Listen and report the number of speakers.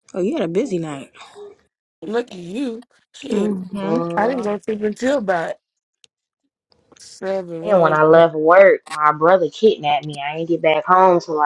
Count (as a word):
three